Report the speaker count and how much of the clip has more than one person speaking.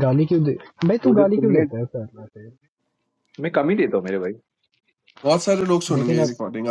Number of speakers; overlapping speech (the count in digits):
3, about 16%